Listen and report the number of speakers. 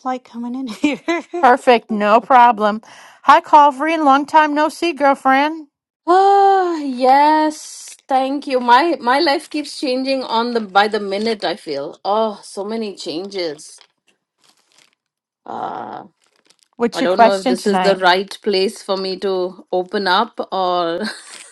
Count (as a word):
three